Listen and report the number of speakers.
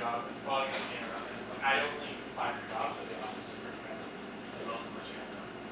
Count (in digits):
1